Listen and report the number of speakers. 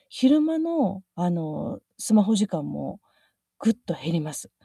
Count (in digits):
1